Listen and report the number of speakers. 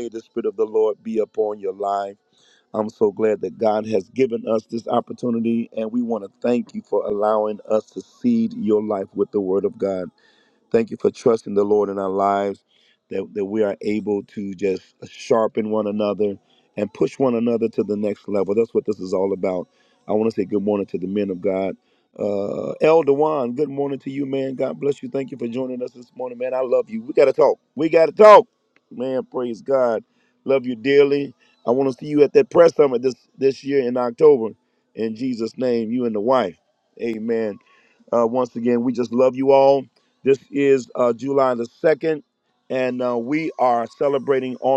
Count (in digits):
1